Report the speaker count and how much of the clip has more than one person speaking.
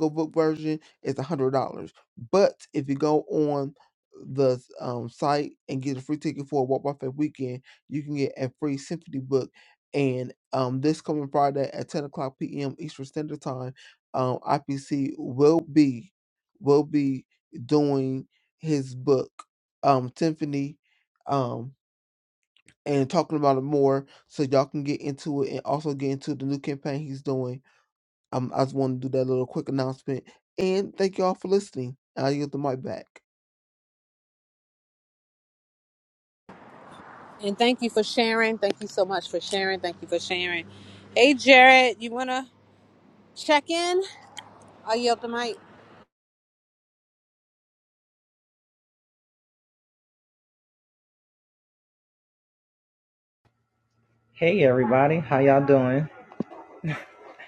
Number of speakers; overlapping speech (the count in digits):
3, no overlap